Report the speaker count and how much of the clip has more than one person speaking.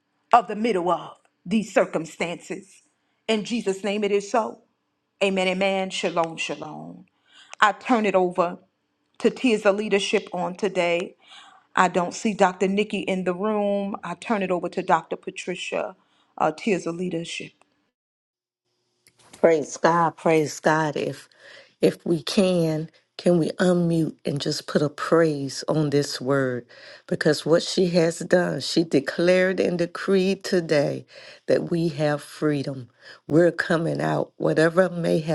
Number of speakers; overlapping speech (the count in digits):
2, no overlap